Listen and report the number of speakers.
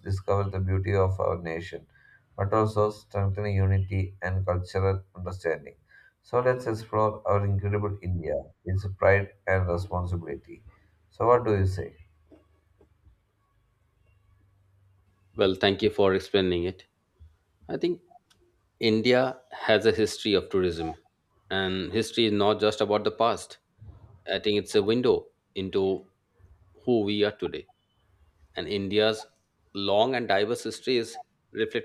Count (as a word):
two